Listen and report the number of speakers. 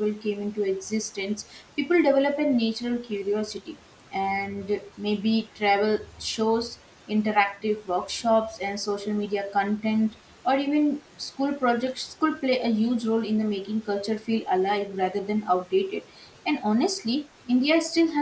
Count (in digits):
1